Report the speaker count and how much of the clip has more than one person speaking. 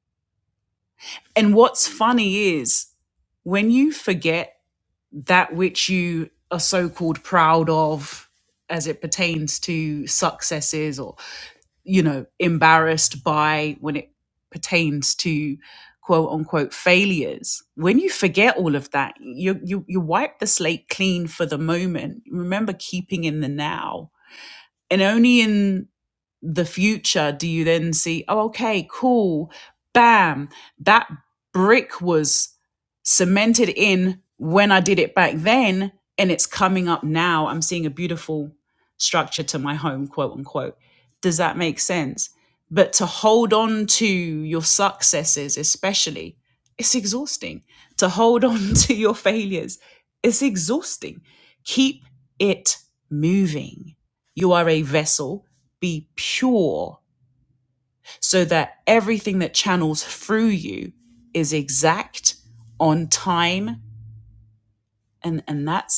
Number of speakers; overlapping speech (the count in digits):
1, no overlap